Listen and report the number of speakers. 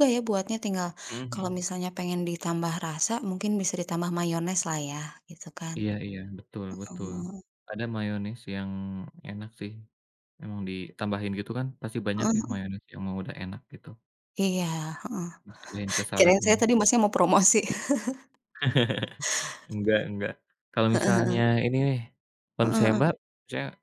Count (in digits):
2